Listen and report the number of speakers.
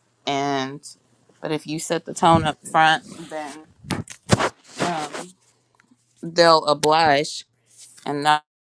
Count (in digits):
1